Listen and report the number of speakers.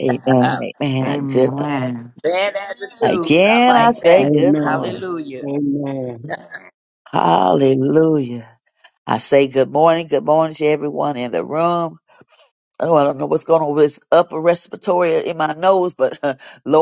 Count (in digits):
4